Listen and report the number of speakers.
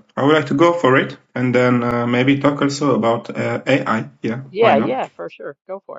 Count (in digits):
2